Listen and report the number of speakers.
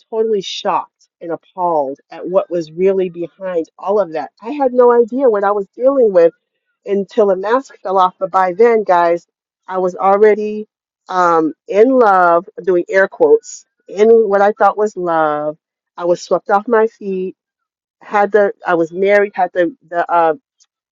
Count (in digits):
1